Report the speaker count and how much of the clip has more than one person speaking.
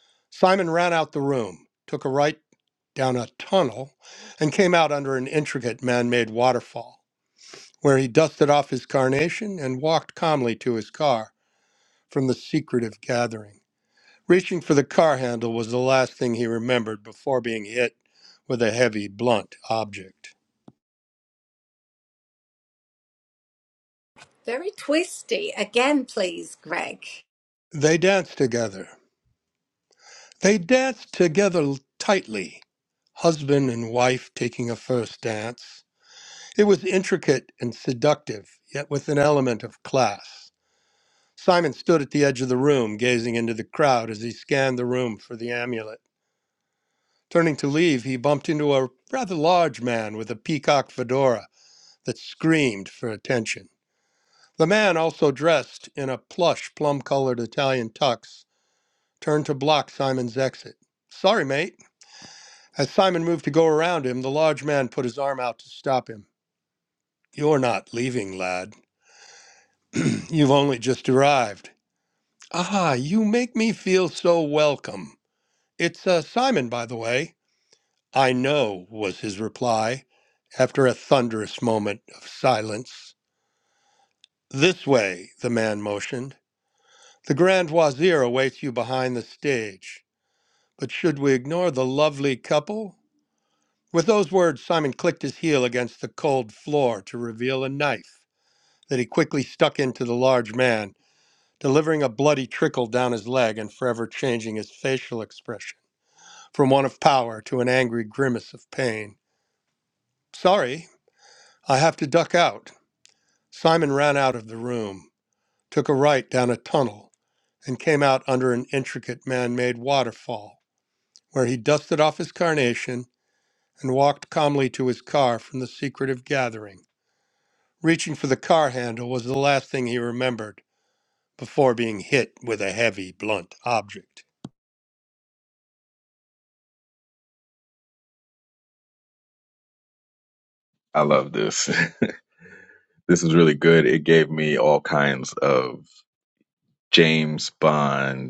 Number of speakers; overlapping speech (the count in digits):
3, no overlap